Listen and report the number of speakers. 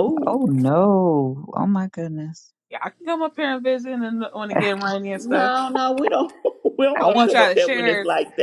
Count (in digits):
3